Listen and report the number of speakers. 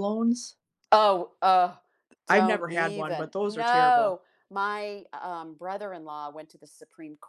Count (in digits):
2